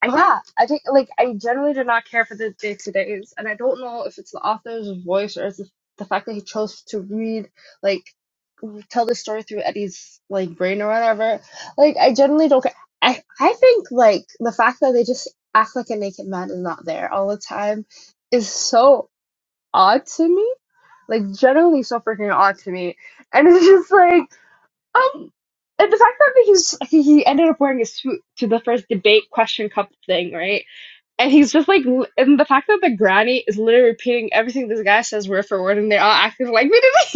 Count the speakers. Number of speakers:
one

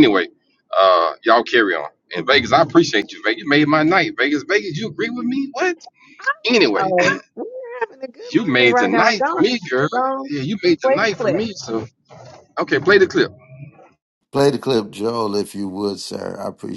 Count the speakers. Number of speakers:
three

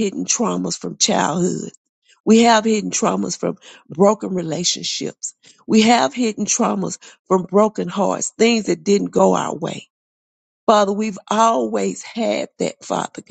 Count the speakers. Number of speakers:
one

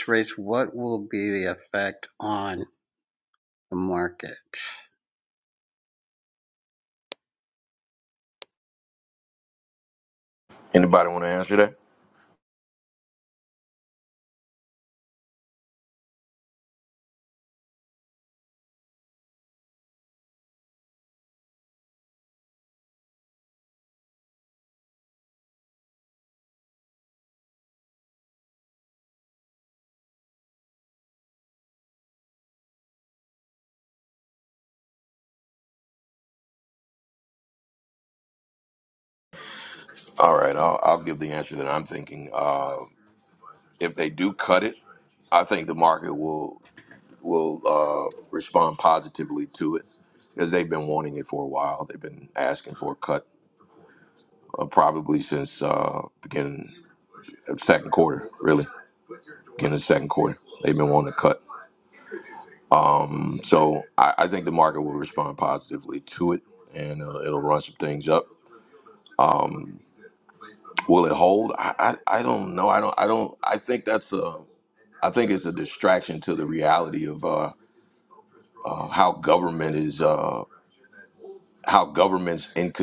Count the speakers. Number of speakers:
two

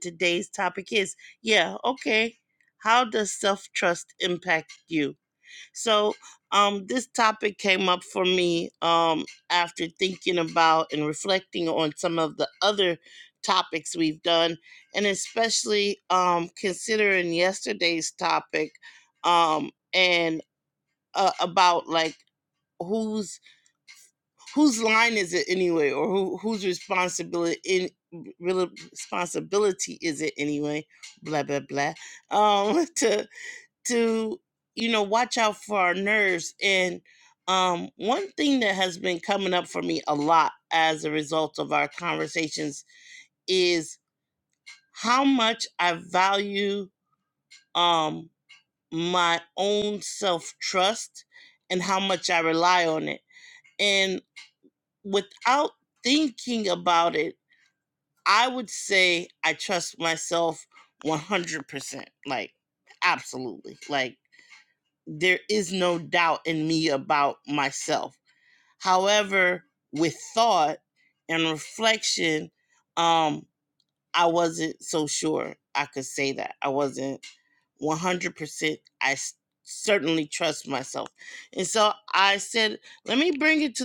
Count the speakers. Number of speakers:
one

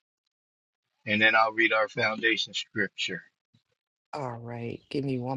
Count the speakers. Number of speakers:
two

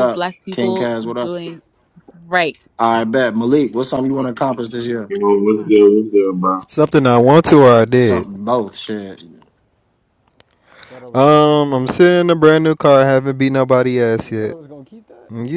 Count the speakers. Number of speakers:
five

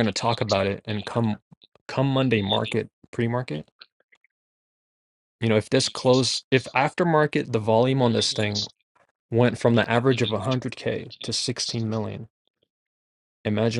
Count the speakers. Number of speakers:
one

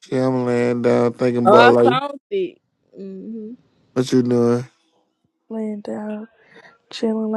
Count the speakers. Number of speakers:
three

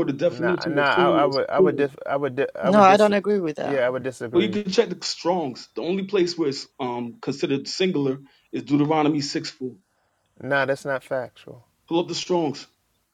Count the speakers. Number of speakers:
three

